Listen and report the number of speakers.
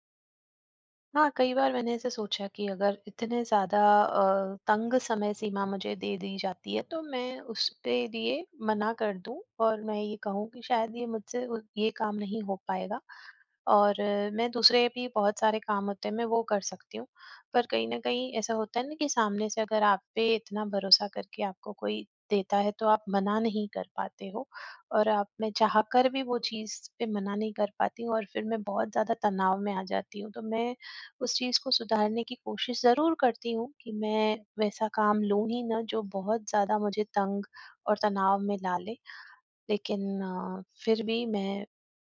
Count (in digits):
1